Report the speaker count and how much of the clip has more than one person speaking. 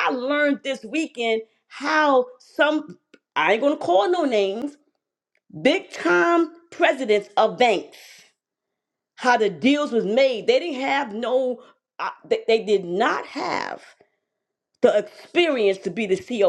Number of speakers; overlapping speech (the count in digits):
1, no overlap